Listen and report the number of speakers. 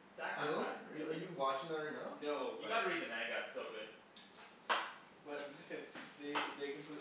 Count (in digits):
3